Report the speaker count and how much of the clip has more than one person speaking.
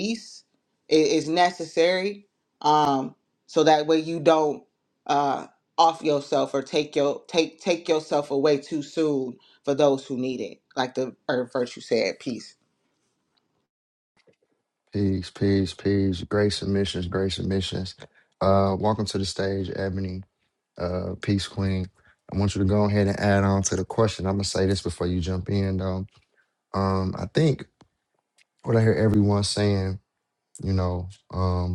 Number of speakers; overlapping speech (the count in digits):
2, no overlap